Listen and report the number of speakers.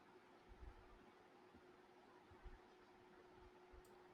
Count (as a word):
zero